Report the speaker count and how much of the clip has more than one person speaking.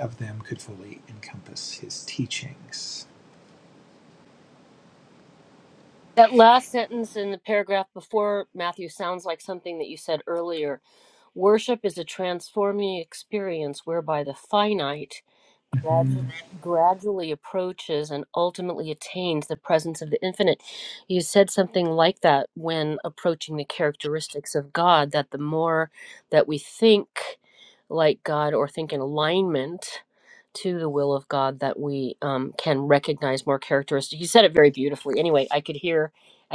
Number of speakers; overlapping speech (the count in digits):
2, about 1%